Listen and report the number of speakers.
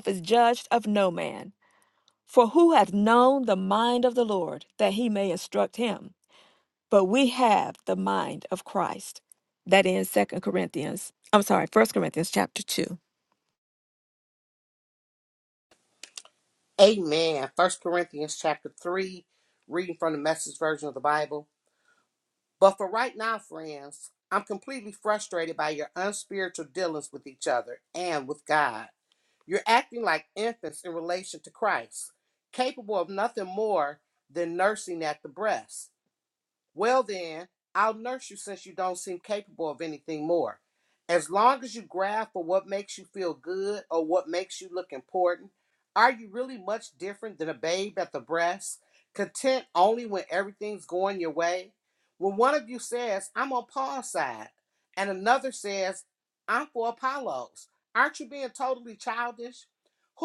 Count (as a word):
two